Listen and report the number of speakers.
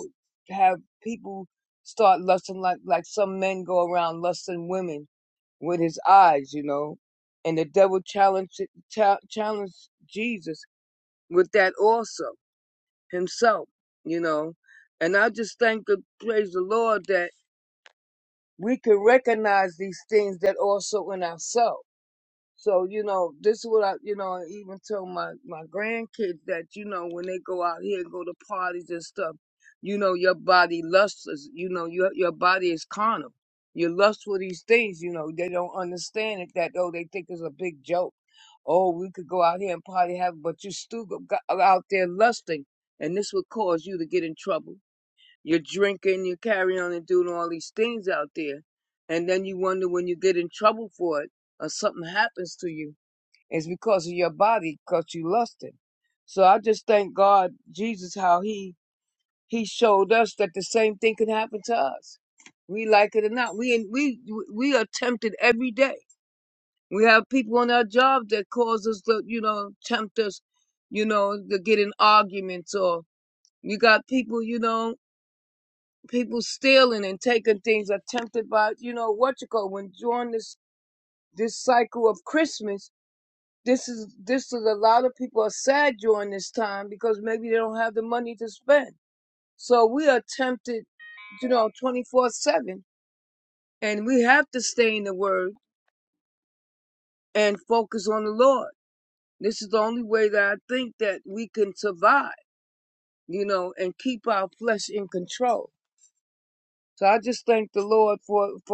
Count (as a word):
one